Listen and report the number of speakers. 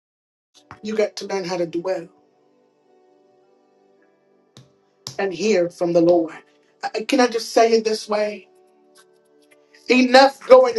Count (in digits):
1